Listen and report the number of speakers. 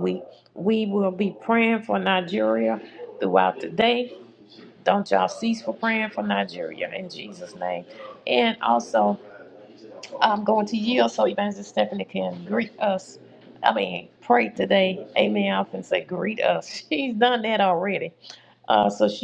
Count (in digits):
1